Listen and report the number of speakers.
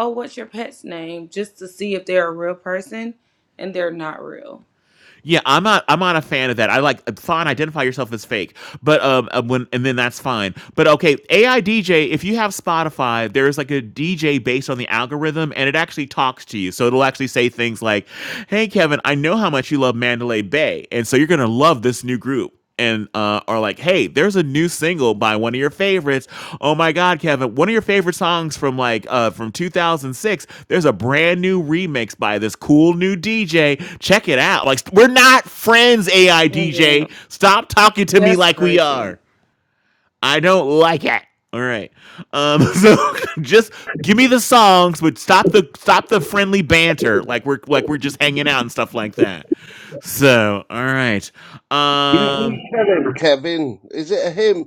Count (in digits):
3